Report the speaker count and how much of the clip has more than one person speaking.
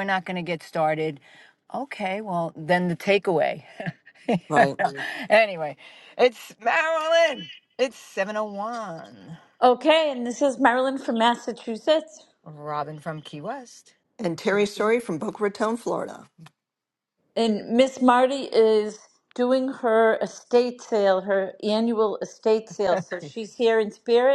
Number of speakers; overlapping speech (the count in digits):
3, about 1%